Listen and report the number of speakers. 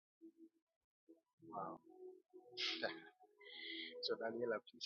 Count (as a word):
one